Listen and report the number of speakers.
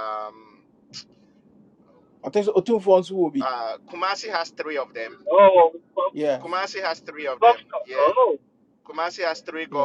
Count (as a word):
three